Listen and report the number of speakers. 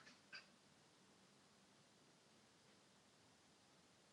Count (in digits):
0